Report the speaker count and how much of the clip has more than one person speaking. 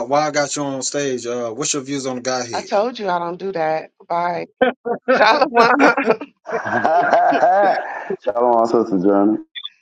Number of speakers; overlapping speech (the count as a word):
three, about 2%